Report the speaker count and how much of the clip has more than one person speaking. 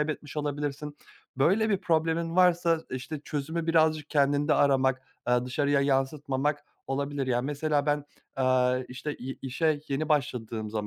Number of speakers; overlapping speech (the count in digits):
1, no overlap